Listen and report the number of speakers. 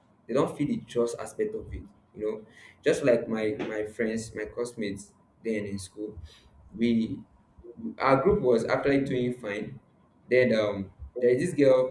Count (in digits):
1